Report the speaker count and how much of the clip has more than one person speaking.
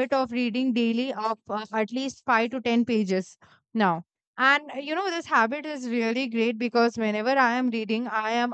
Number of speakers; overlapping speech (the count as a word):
one, no overlap